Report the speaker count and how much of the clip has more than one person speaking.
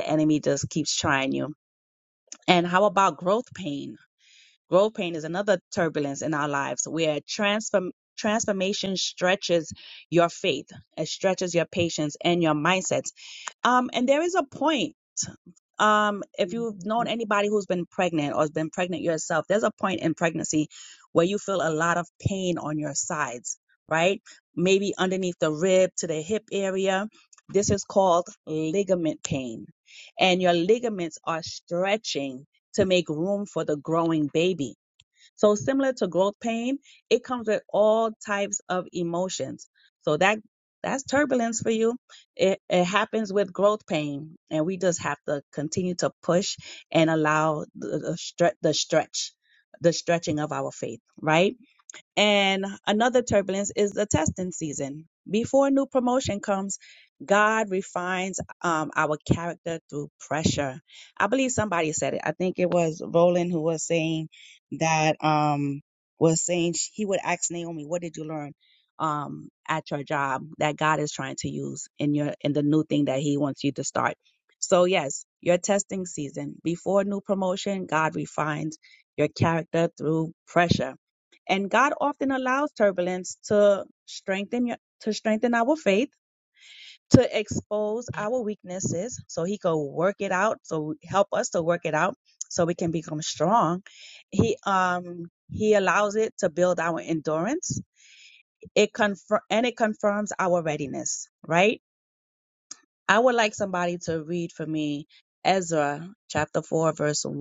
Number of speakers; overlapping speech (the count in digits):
1, no overlap